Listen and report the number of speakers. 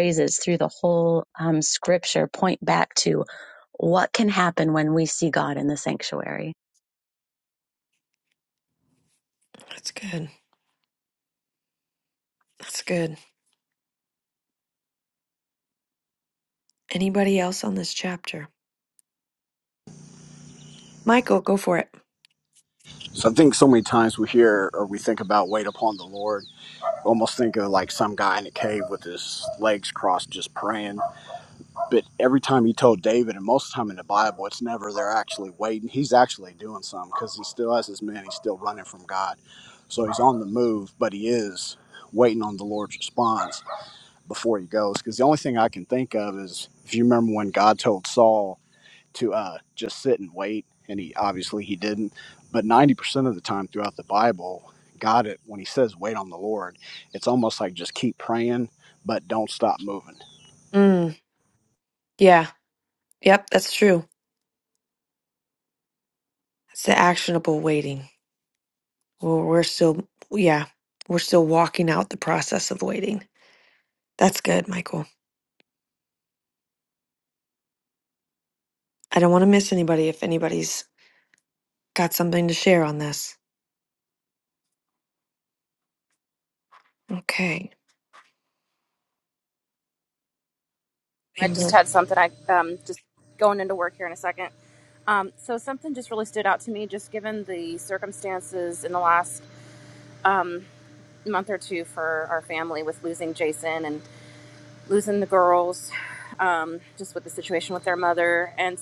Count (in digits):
4